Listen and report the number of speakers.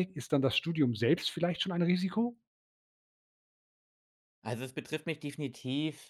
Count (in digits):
2